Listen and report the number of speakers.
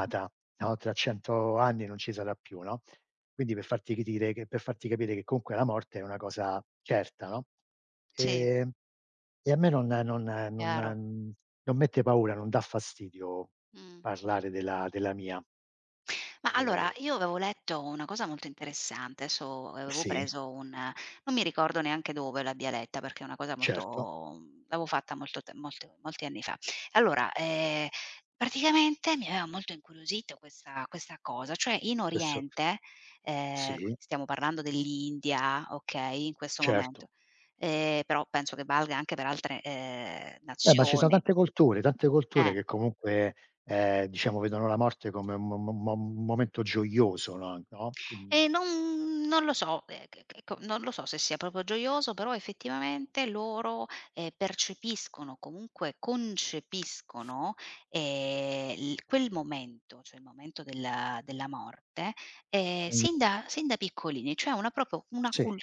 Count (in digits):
2